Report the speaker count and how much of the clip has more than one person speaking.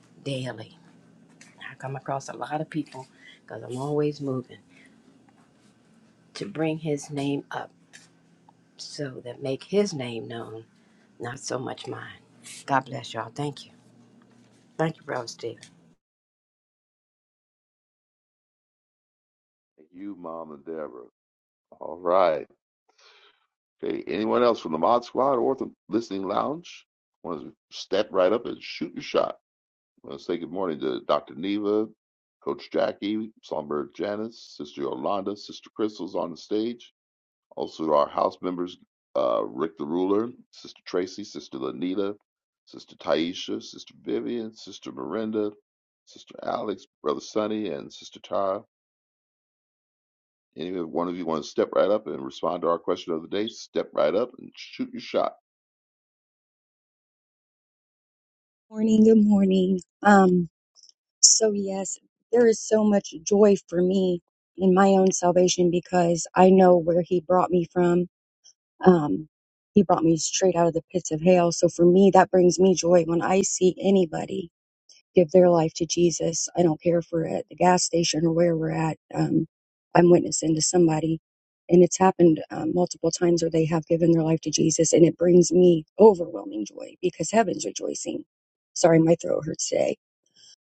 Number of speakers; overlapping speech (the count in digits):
3, no overlap